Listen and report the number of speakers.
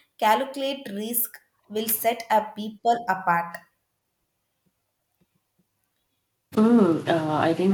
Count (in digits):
2